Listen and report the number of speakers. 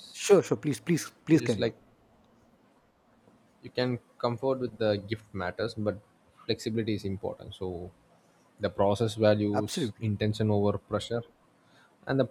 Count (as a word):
two